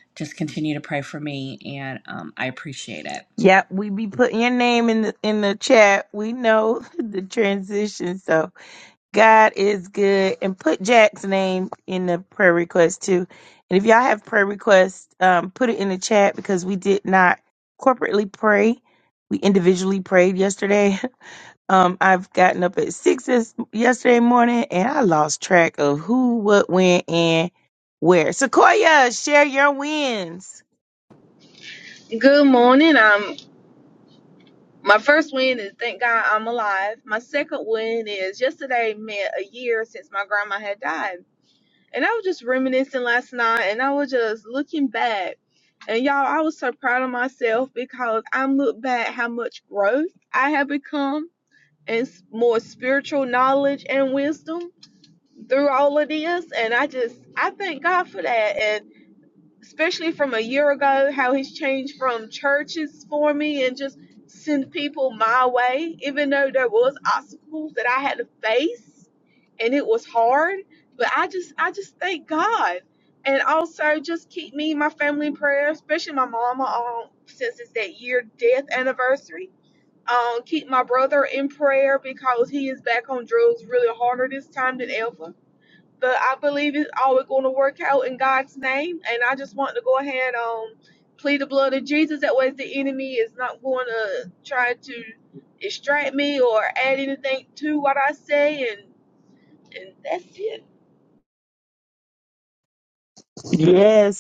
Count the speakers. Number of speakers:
3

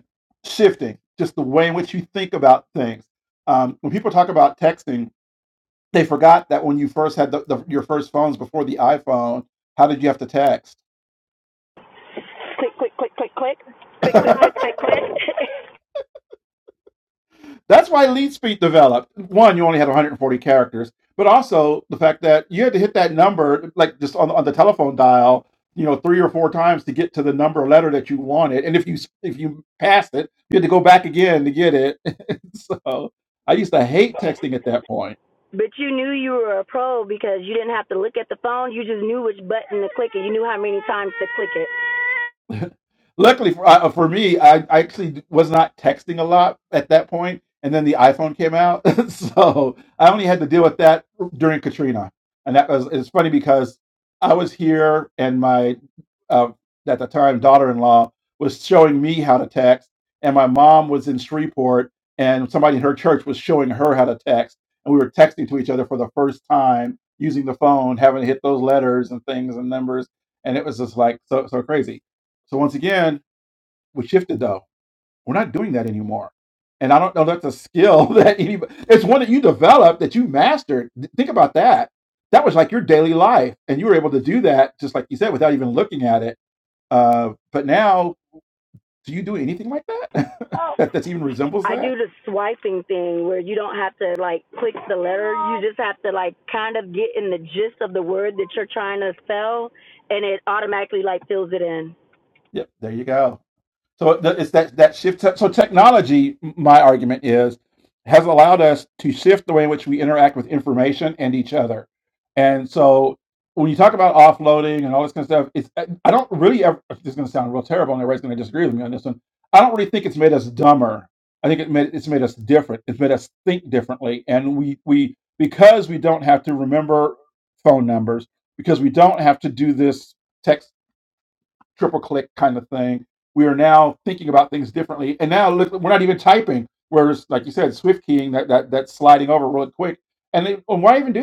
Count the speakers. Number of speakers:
2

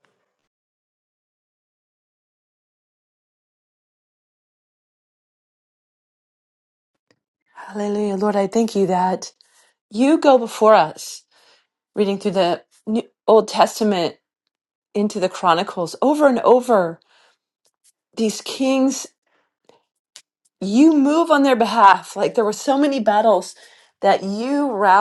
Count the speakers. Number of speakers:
1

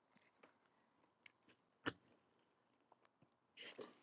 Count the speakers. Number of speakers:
0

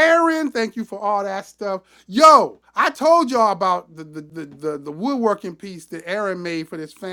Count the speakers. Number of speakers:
1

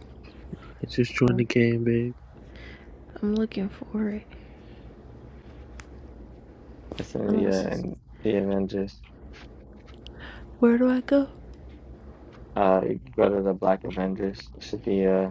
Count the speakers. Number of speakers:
3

